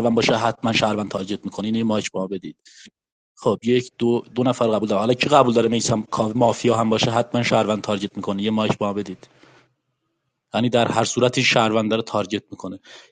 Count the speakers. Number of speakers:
1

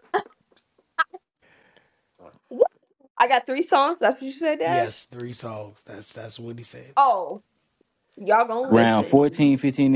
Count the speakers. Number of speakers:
3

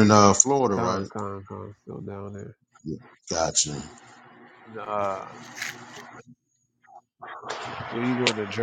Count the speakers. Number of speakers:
2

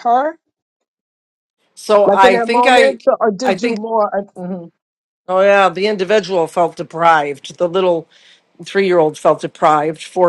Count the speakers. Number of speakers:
2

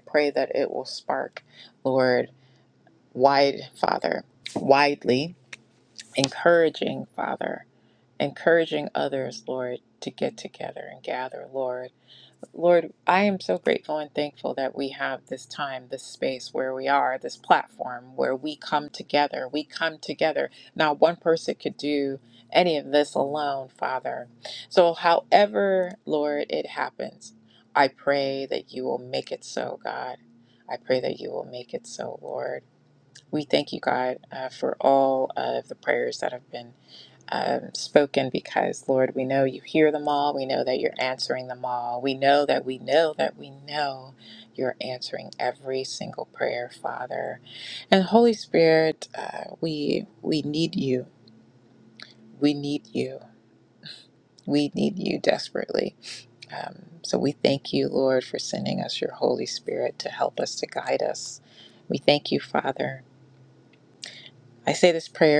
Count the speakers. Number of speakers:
1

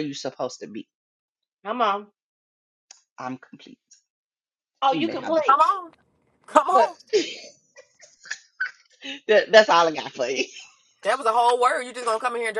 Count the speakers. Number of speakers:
3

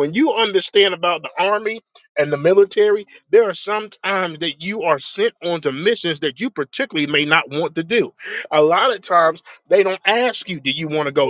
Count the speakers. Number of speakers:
1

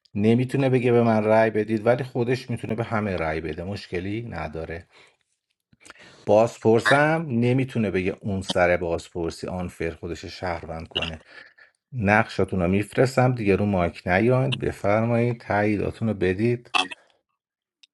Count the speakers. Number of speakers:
1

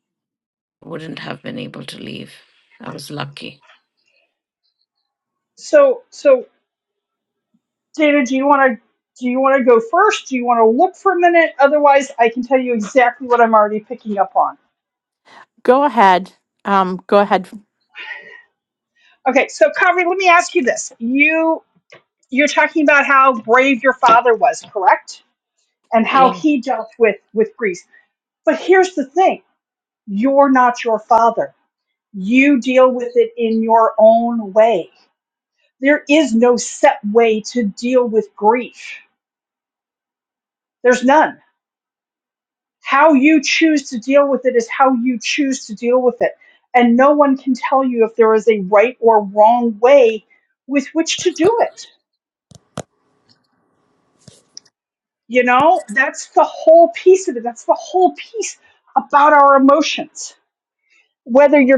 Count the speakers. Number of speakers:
3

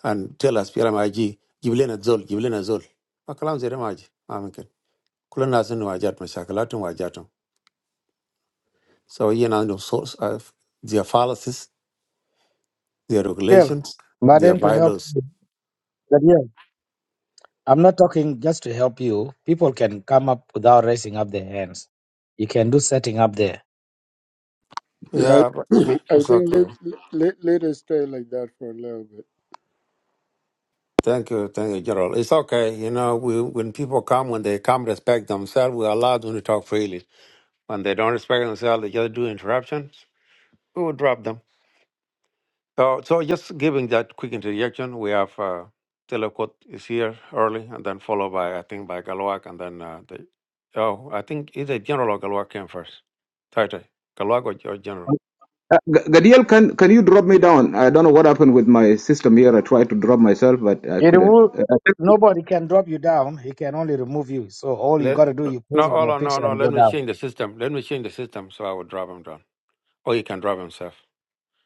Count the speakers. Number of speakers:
4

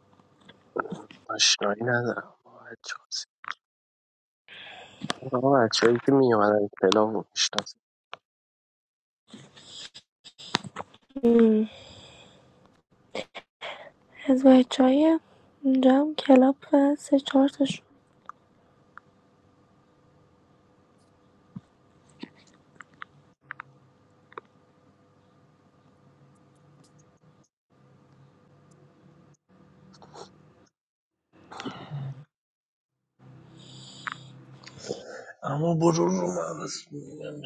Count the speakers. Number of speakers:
3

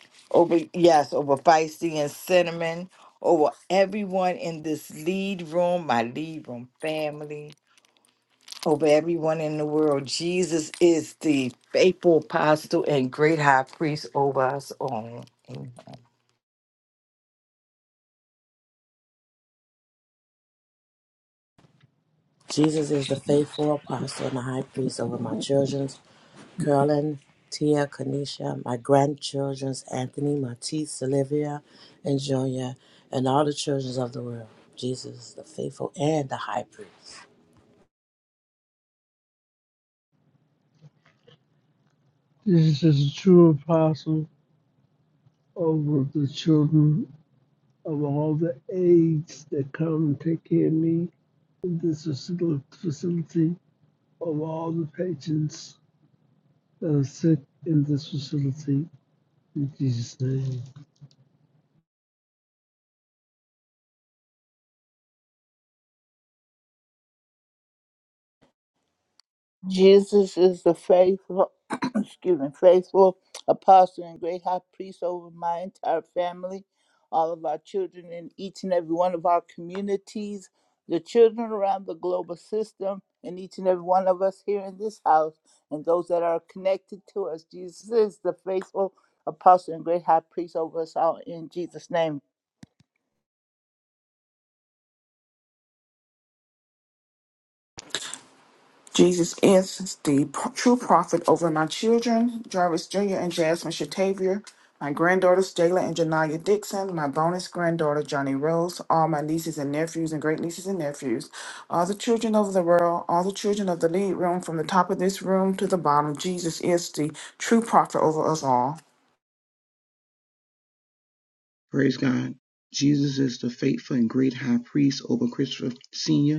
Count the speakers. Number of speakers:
6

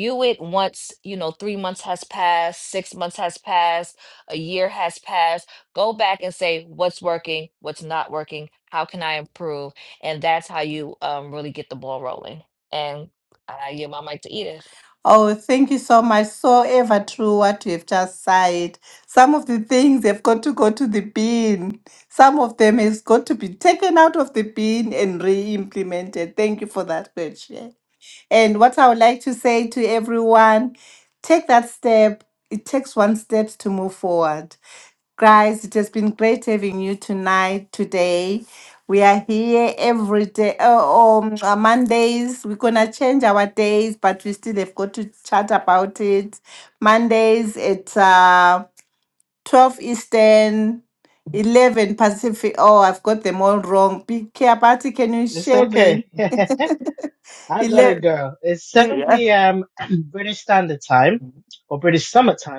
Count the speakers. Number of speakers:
3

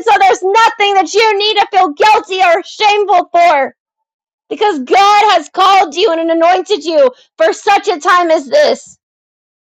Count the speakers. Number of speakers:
1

